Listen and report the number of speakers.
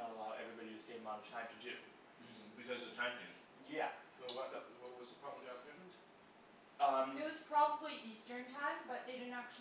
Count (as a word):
four